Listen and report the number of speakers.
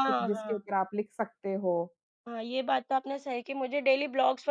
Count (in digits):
2